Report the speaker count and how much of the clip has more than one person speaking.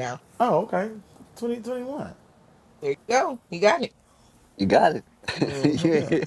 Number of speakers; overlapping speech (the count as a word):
three, about 9%